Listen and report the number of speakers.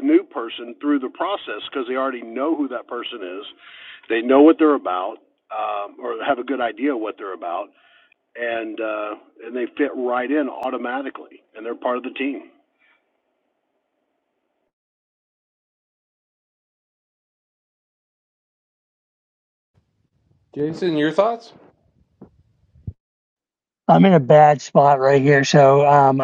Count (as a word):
three